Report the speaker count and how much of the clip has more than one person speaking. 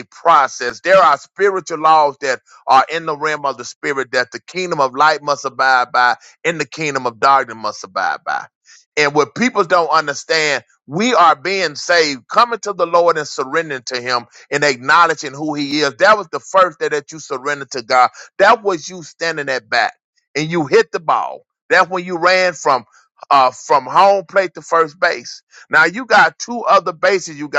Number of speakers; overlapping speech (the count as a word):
one, no overlap